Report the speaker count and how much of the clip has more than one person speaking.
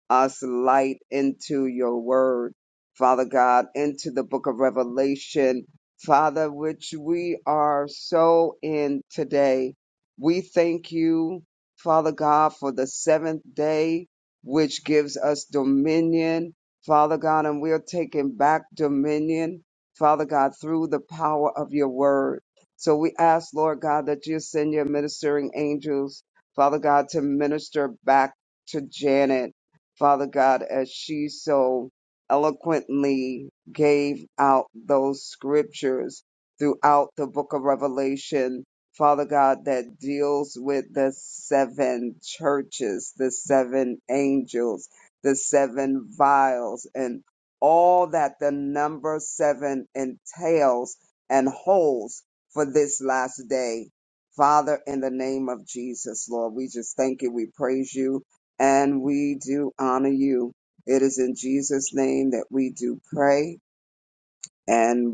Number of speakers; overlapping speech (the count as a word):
one, no overlap